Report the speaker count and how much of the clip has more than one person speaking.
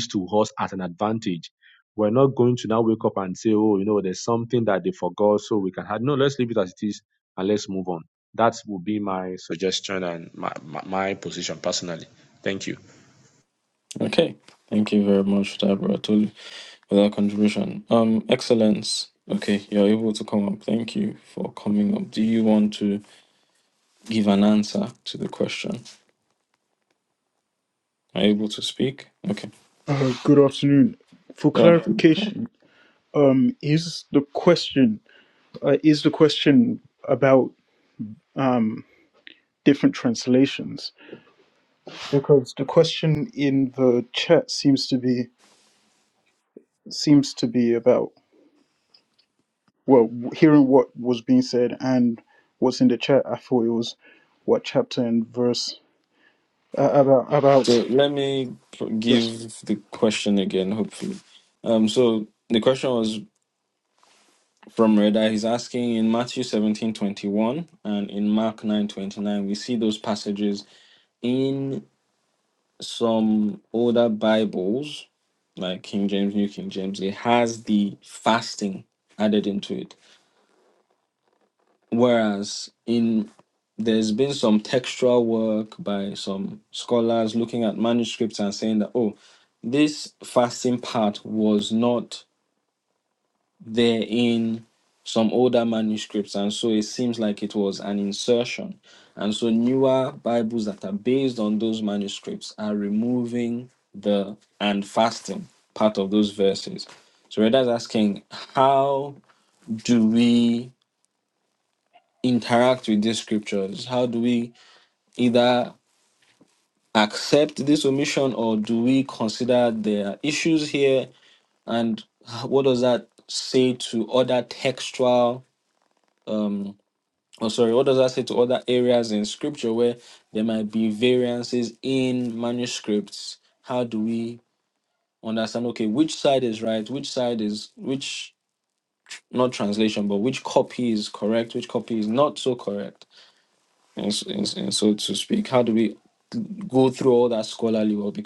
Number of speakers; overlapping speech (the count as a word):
three, under 1%